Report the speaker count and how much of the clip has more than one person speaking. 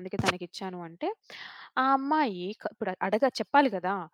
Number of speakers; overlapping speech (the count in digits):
1, no overlap